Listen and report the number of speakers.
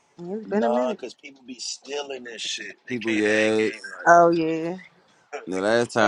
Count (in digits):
3